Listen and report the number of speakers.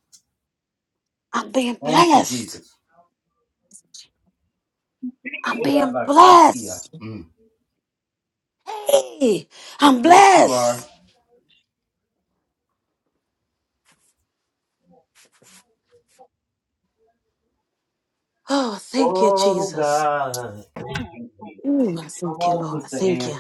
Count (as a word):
two